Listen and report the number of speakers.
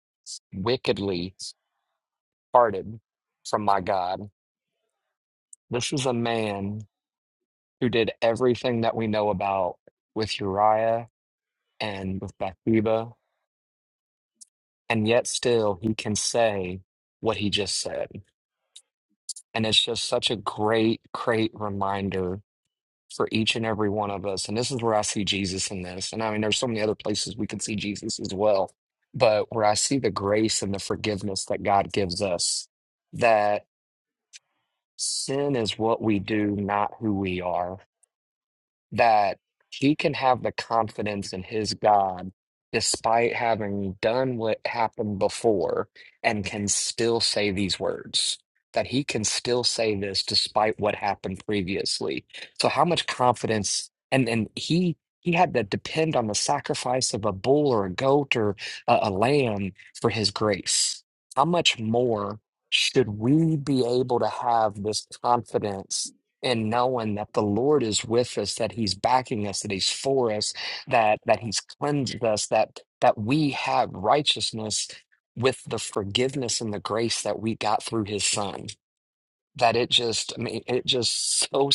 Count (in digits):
1